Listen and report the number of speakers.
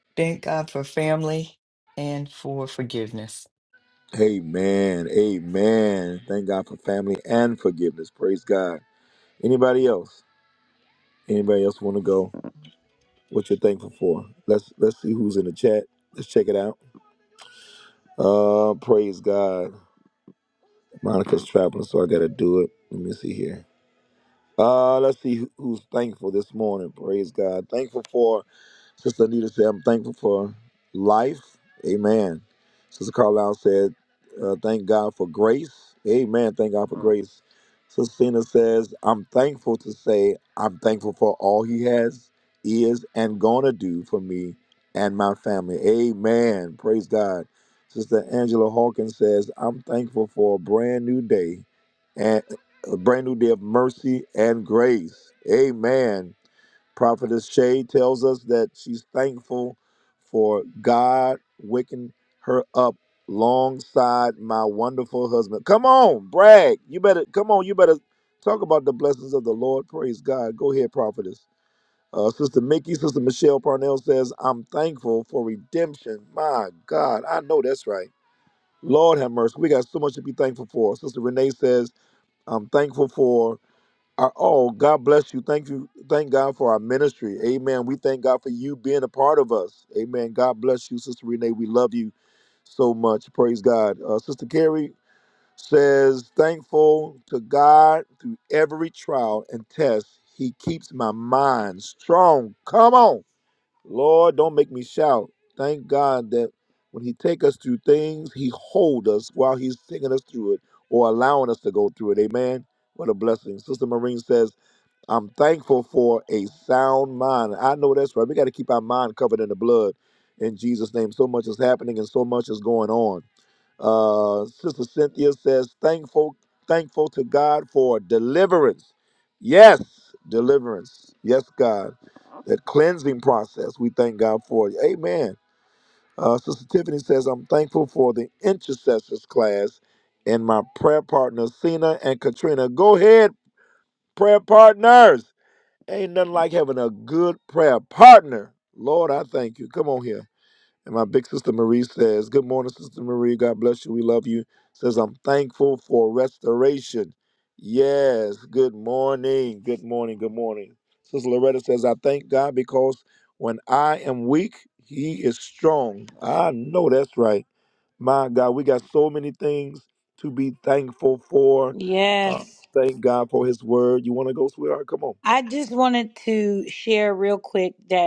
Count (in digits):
3